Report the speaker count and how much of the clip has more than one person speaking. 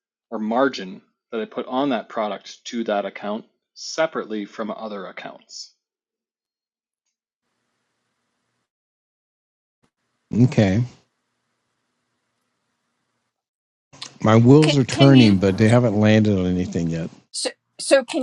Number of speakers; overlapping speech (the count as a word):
three, about 4%